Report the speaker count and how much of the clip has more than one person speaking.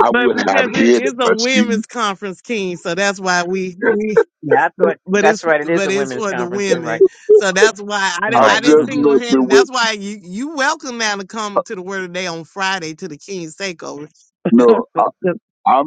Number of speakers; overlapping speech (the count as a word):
three, about 32%